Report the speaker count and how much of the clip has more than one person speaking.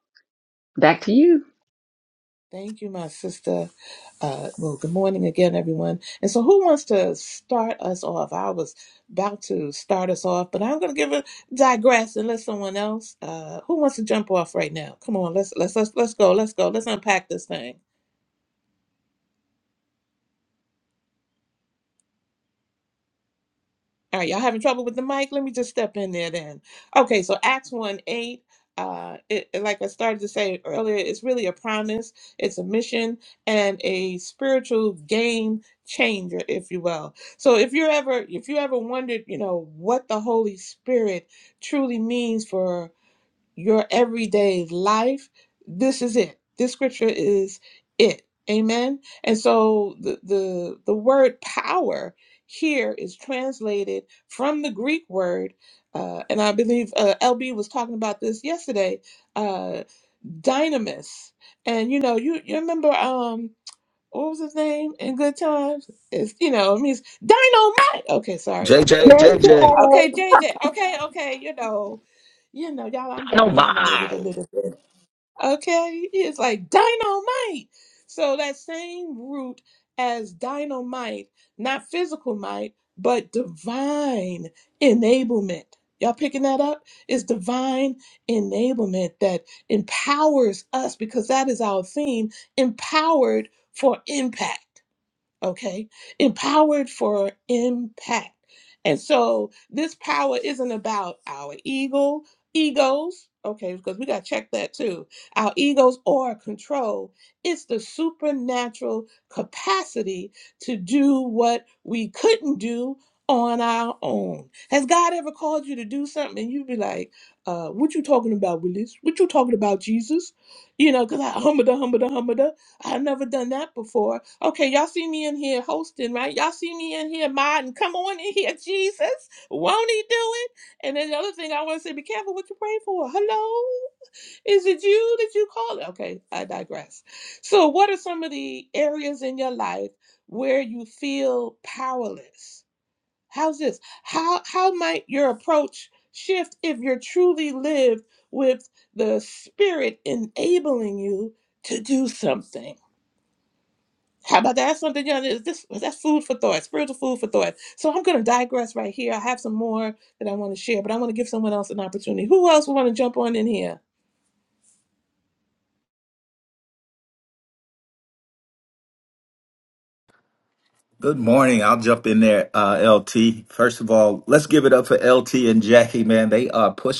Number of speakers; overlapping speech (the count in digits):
3, about 1%